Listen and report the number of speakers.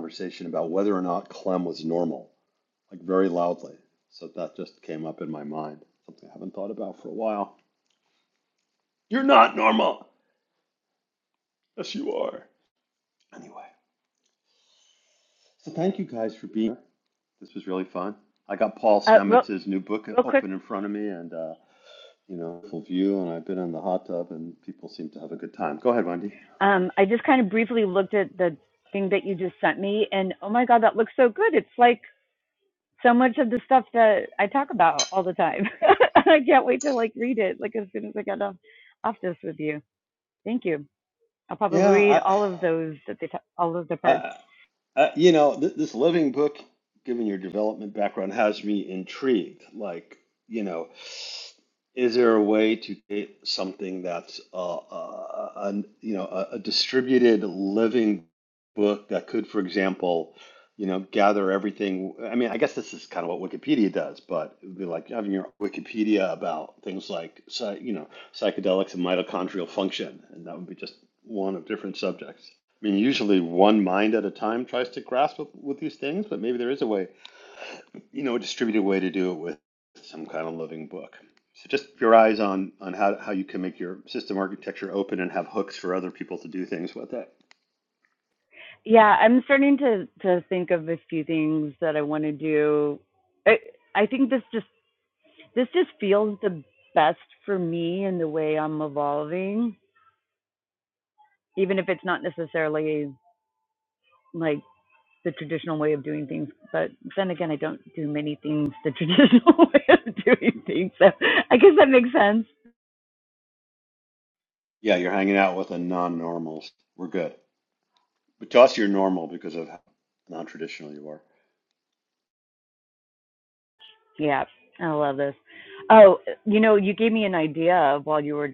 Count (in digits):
2